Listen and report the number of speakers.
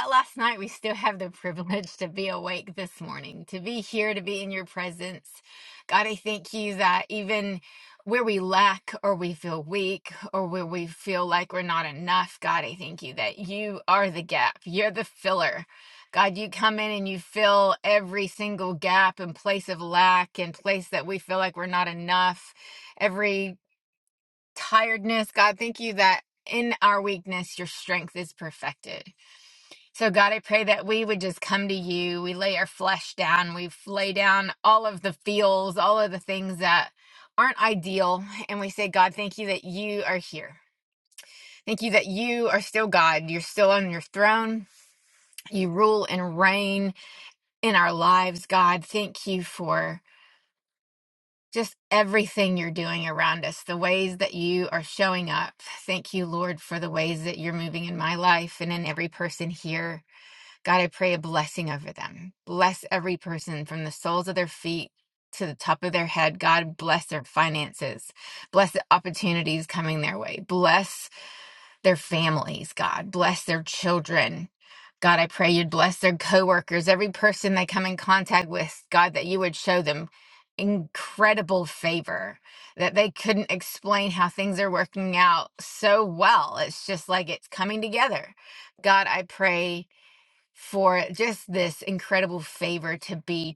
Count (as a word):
one